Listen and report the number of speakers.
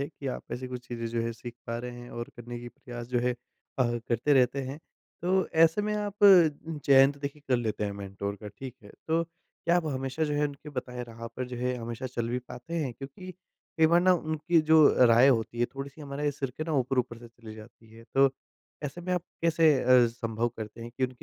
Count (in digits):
1